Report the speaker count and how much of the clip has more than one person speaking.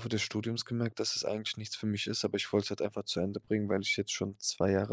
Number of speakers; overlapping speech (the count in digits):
1, no overlap